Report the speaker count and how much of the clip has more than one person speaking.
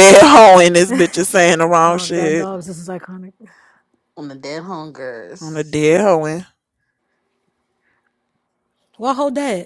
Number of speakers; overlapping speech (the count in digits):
3, about 6%